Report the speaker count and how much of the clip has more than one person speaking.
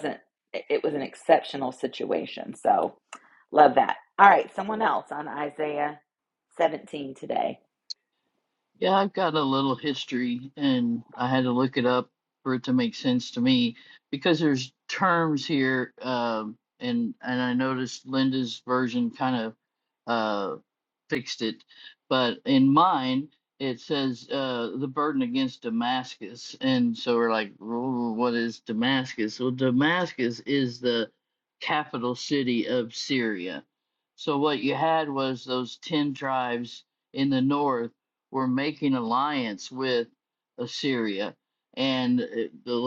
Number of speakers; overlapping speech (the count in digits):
2, no overlap